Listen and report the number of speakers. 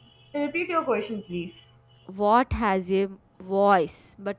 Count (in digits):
2